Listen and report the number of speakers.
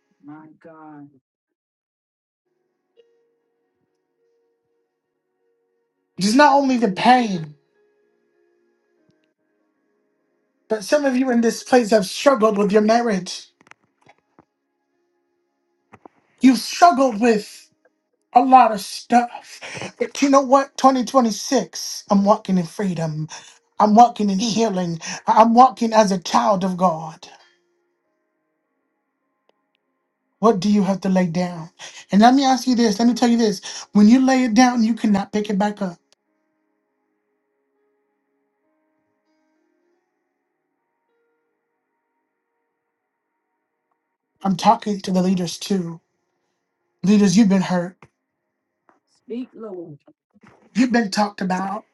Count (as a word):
two